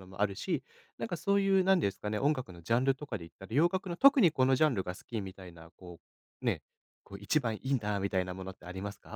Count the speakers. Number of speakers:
1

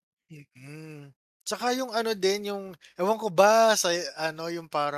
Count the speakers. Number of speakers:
1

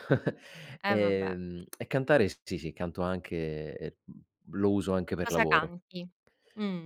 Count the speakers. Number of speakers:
2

